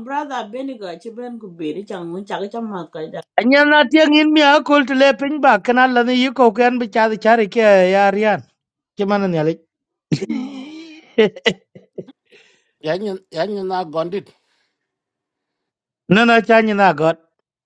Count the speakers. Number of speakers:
3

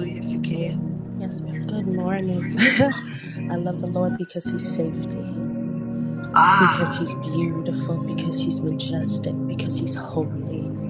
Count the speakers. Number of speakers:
2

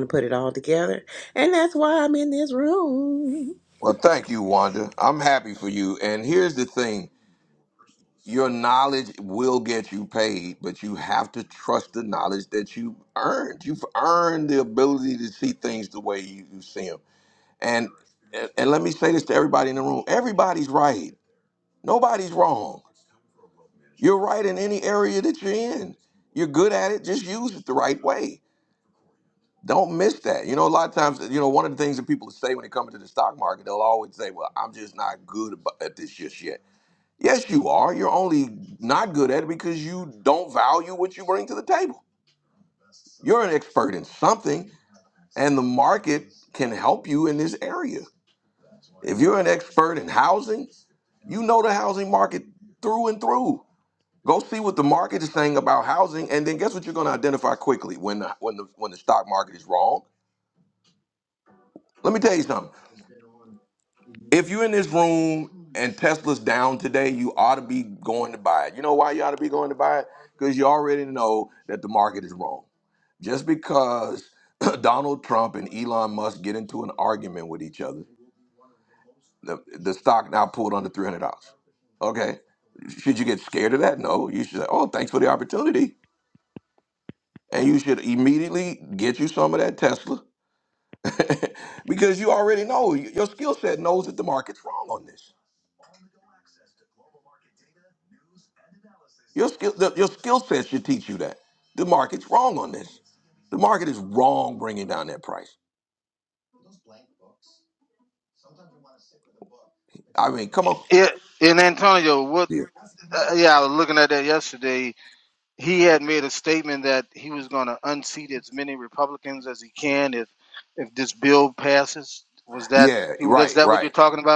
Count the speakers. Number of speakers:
3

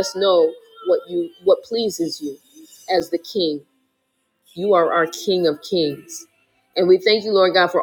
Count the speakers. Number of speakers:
1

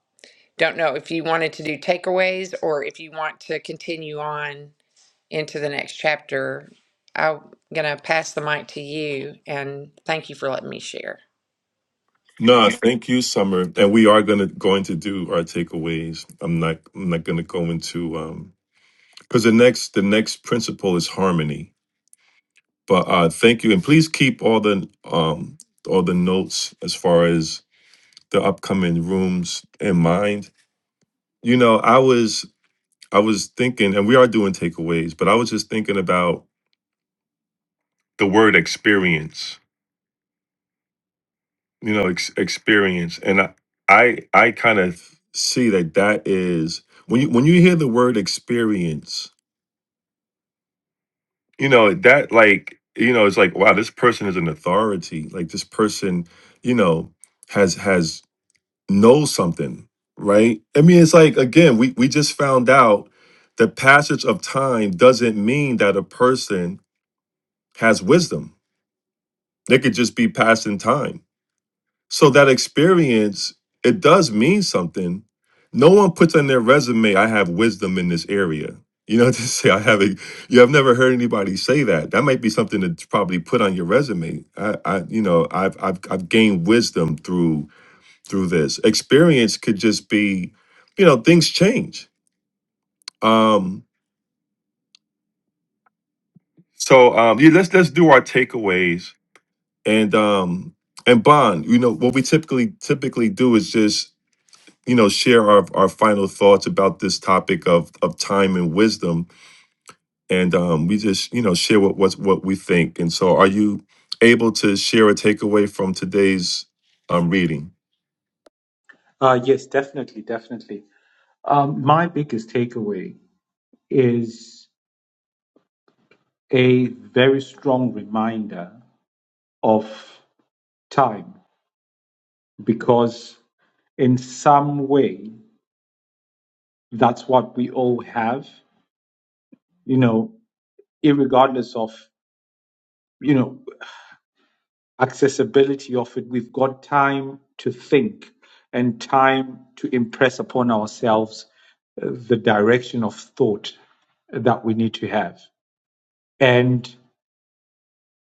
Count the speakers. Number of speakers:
3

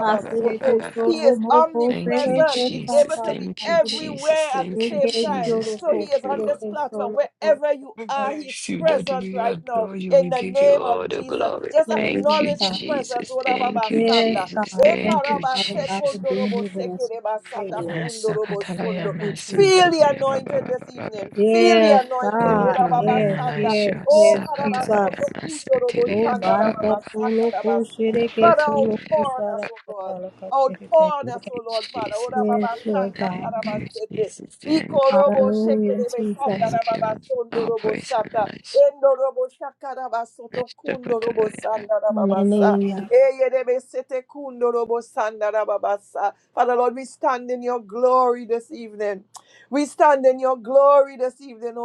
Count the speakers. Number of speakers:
3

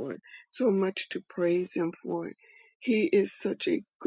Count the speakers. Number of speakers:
1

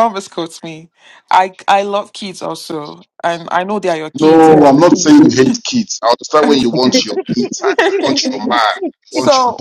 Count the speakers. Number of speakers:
2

